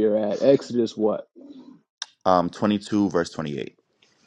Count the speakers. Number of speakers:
2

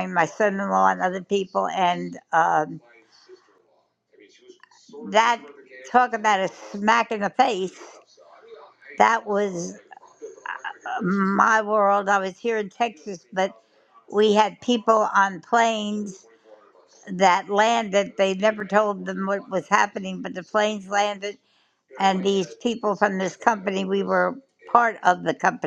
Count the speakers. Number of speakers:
1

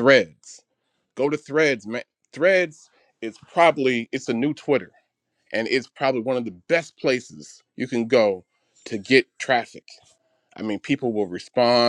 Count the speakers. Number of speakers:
1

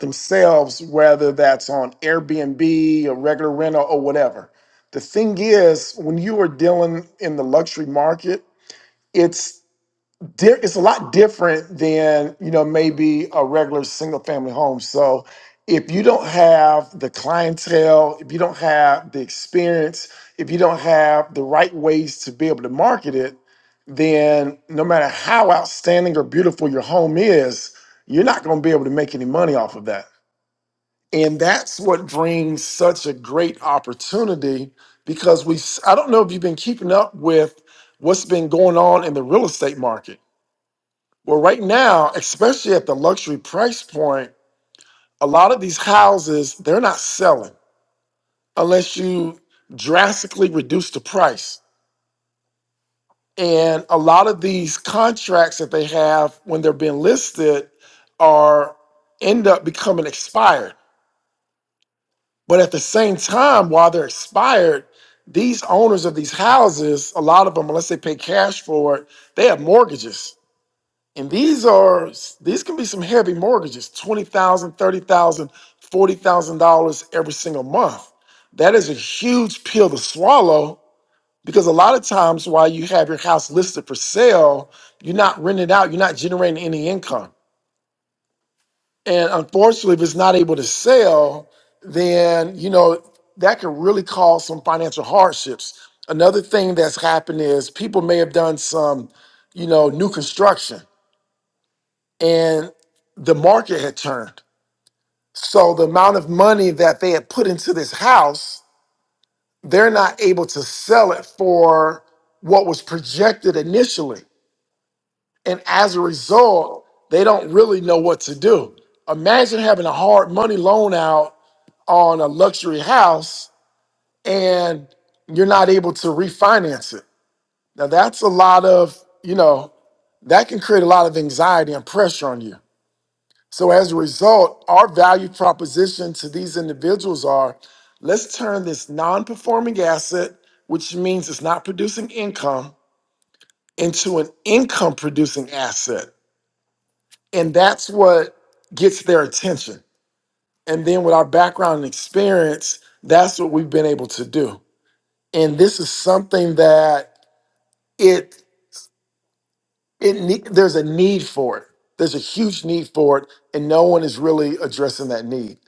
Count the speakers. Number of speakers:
1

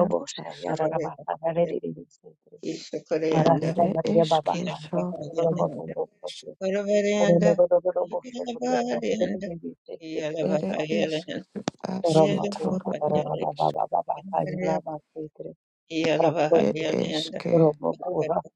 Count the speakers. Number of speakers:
3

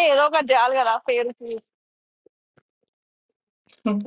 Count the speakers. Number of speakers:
1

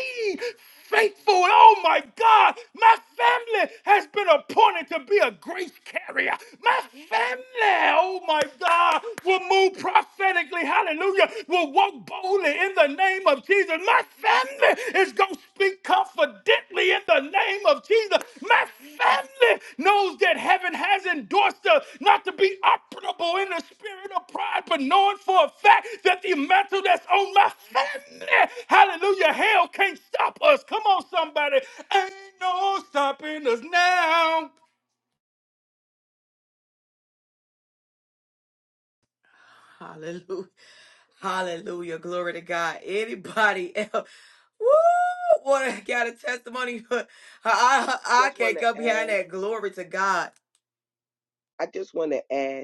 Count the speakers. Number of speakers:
3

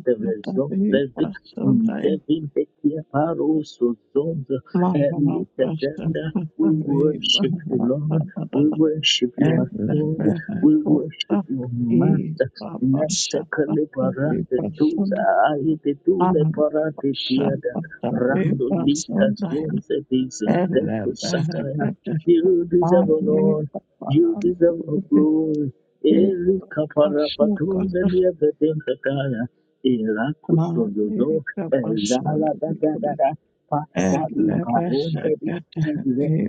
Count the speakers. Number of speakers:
2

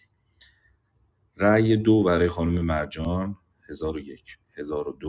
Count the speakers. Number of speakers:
1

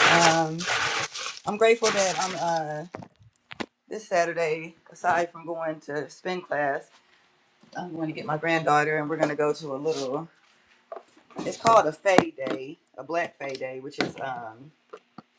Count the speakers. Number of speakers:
1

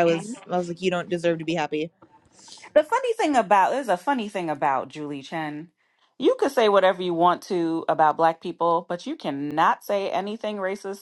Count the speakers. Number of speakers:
2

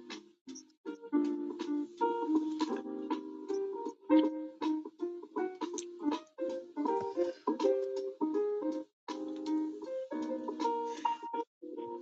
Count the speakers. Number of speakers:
0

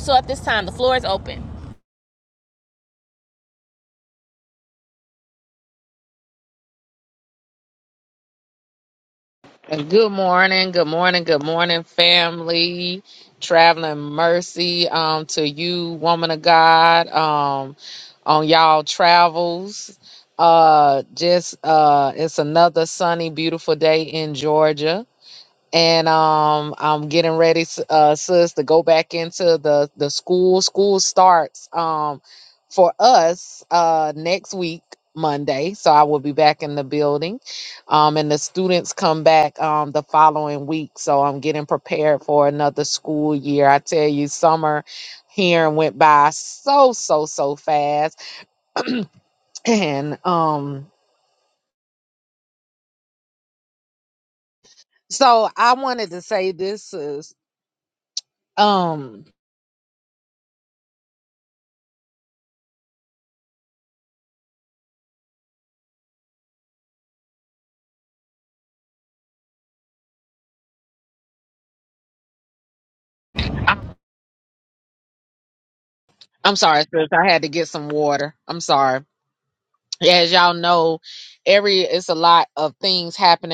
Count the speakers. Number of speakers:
2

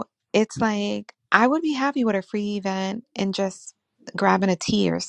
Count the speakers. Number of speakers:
1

